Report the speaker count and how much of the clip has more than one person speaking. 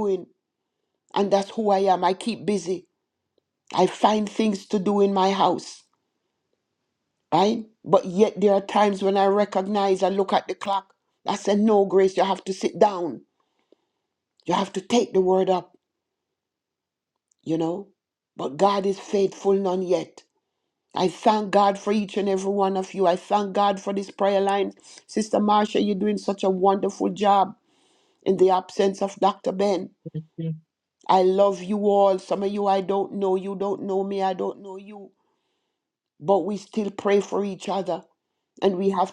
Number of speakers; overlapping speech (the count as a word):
one, no overlap